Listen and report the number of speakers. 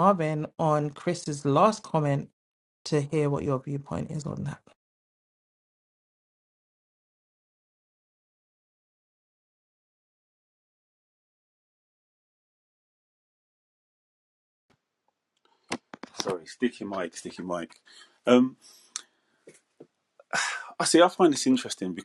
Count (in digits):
2